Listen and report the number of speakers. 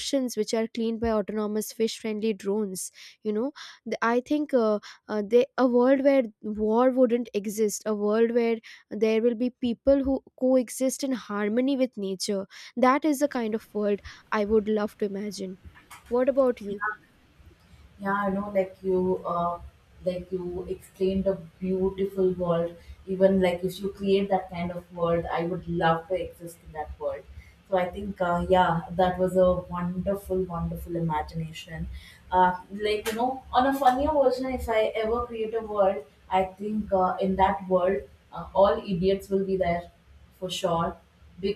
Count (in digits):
2